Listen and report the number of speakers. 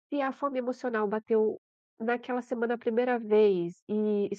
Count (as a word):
one